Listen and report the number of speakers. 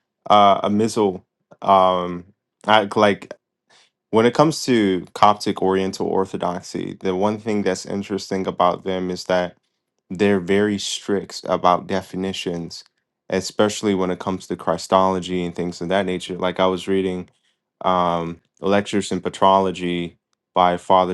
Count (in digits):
1